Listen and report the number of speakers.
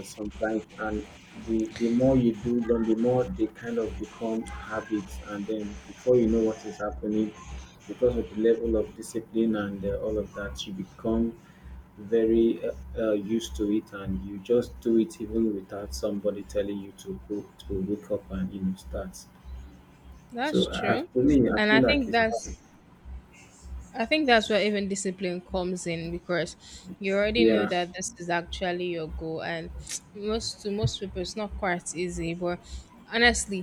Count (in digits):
2